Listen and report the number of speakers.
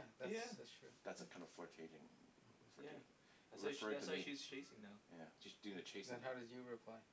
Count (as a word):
three